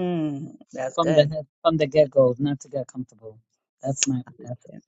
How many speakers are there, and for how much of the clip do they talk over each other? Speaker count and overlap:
2, about 12%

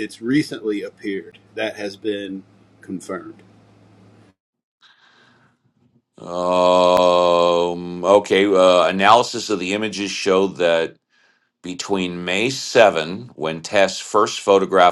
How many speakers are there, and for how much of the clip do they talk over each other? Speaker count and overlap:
2, no overlap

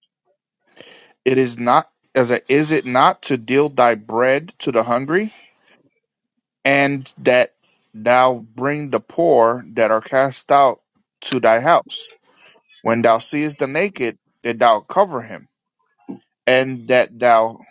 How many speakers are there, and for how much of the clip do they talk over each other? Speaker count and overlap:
1, no overlap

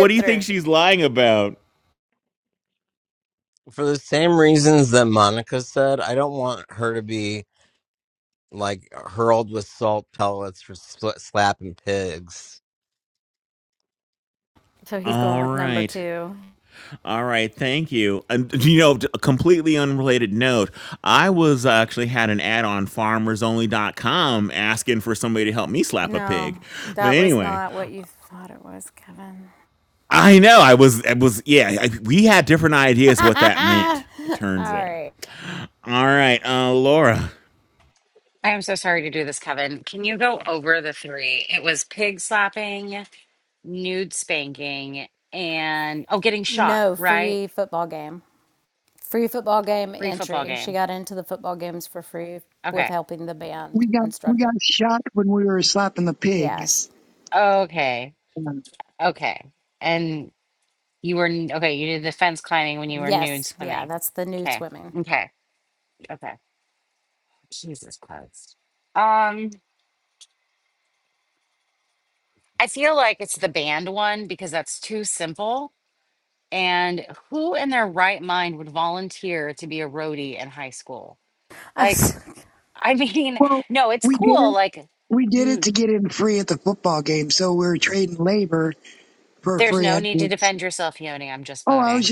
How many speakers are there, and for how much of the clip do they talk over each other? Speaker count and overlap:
5, about 10%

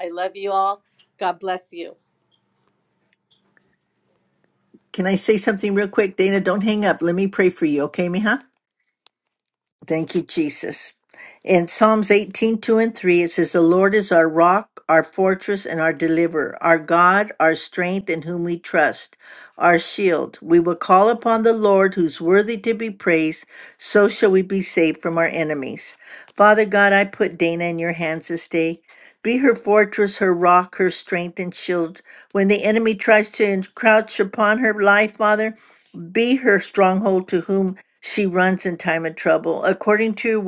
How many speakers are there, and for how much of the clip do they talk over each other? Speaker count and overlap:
2, no overlap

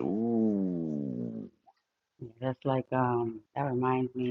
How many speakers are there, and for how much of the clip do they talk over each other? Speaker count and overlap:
2, no overlap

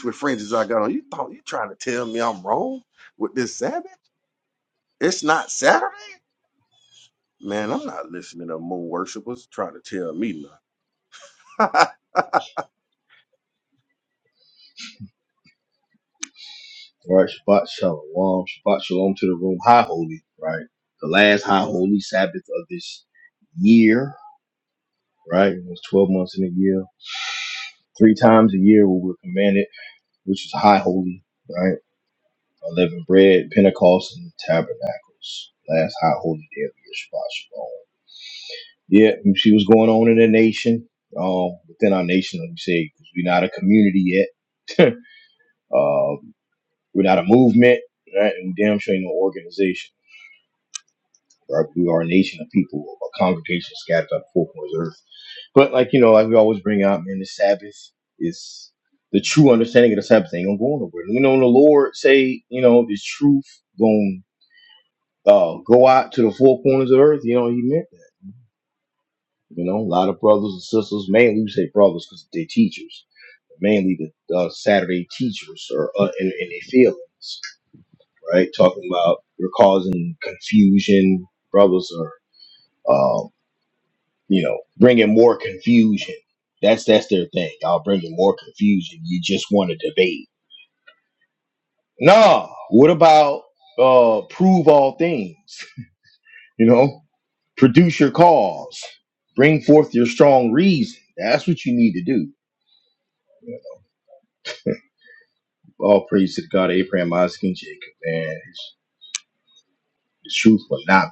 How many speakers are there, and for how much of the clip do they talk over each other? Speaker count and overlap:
2, no overlap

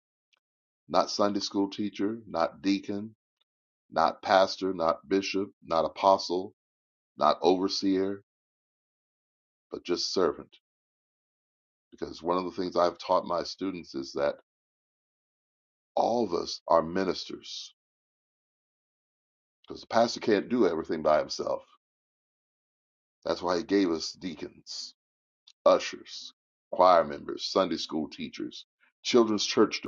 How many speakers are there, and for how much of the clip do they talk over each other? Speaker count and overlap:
1, no overlap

